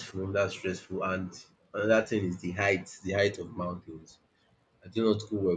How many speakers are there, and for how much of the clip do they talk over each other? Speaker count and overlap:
one, no overlap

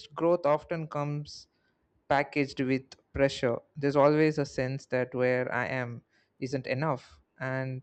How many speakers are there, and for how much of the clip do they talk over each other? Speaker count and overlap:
one, no overlap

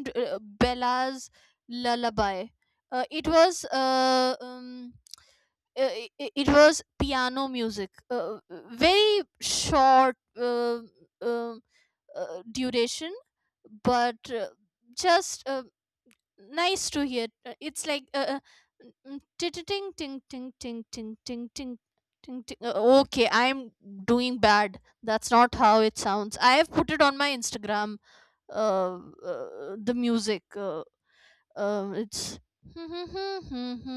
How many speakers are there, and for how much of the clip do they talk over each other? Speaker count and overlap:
one, no overlap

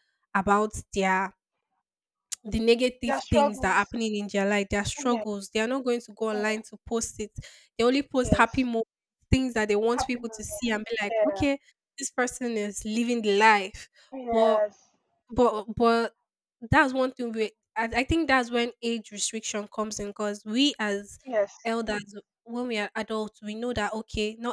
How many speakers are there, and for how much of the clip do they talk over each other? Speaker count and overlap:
two, about 12%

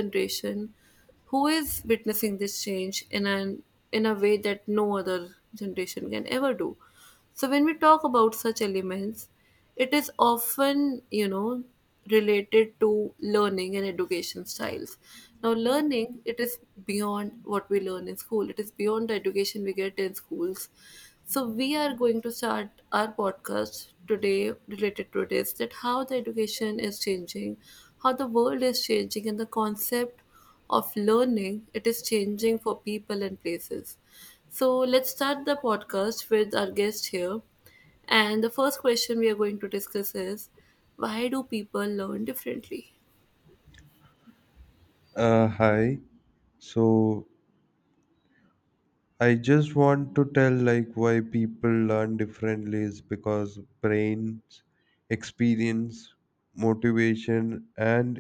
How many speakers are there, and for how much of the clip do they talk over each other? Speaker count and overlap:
two, no overlap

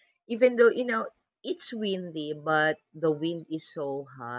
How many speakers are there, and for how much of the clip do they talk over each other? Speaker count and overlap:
one, no overlap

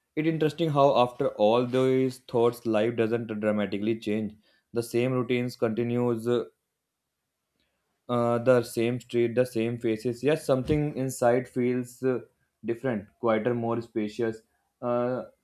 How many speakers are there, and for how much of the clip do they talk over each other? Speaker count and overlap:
one, no overlap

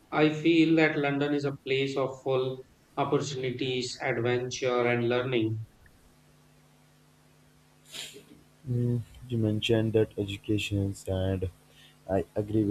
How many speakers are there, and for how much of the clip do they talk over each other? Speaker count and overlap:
two, no overlap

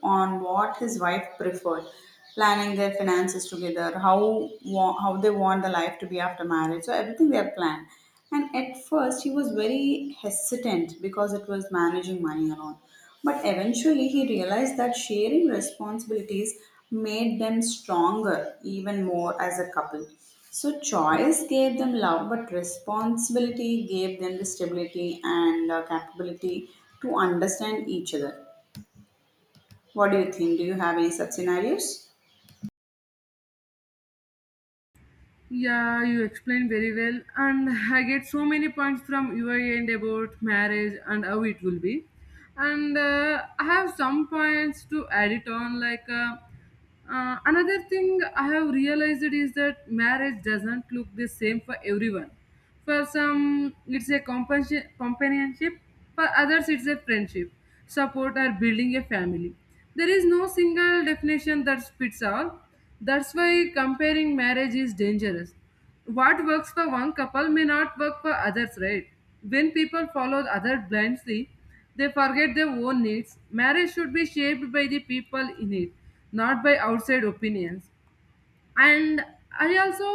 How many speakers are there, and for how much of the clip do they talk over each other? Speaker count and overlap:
two, no overlap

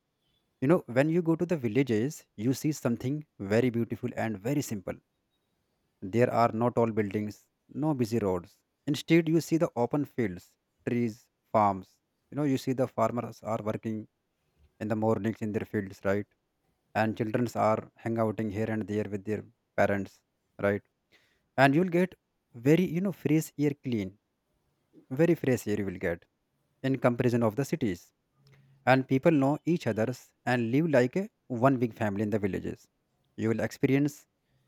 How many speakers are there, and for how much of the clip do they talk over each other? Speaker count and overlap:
one, no overlap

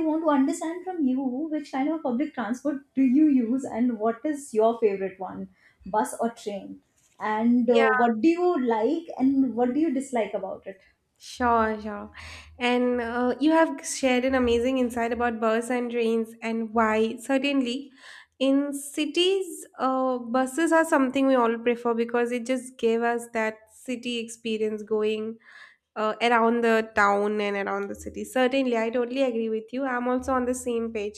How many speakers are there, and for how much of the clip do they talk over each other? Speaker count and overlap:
two, about 1%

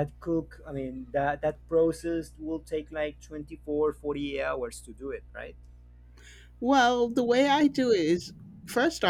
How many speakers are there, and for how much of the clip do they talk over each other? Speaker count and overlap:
two, no overlap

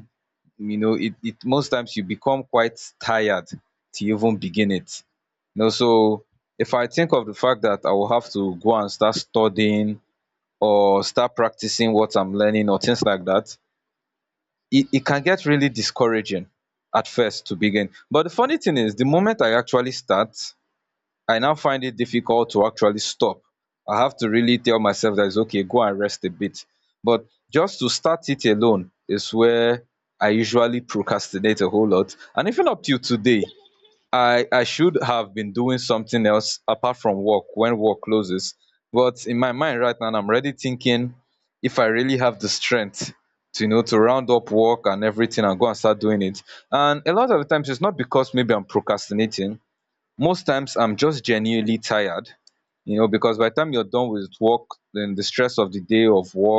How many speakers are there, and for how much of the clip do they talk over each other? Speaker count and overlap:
one, no overlap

